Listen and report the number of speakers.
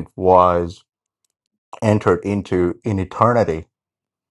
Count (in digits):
1